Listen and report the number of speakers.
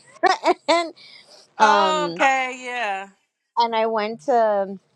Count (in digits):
2